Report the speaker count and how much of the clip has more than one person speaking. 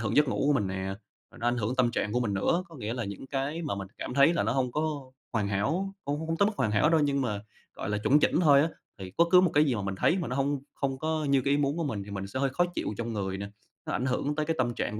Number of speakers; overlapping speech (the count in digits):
1, no overlap